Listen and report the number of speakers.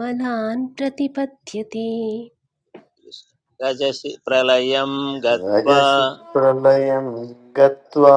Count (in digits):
3